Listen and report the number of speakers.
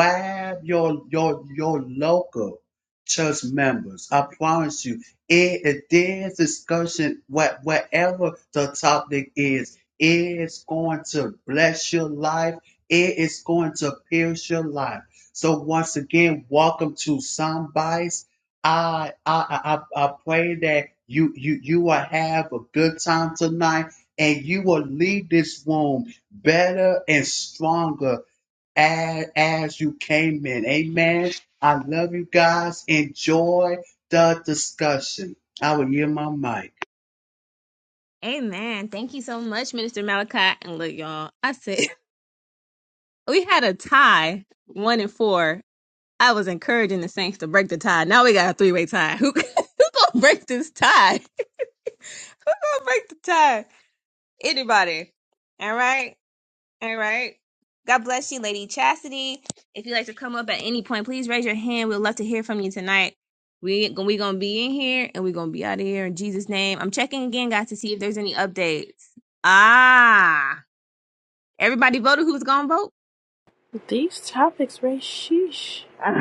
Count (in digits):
3